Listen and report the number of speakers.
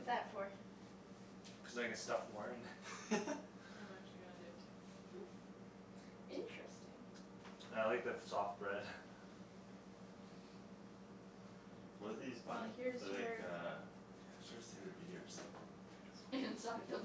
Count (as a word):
four